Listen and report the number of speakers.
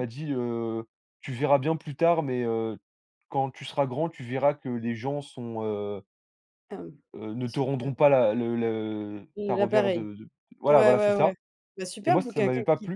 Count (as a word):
two